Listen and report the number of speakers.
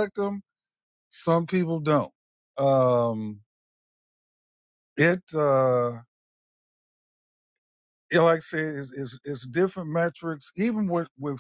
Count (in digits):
1